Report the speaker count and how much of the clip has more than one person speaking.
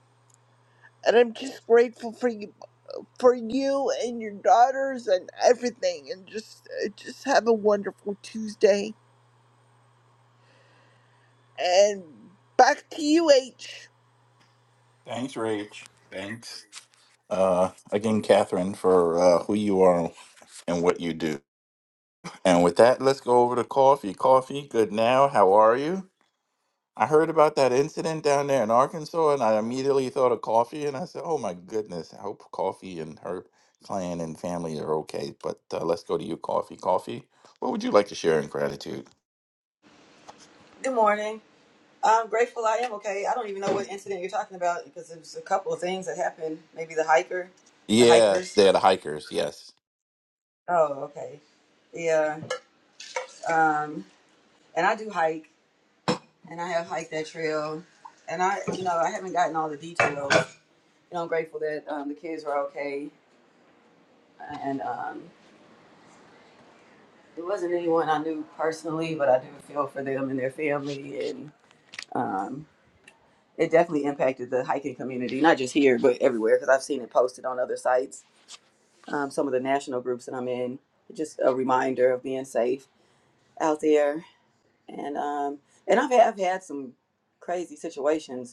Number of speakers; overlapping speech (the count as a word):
three, about 1%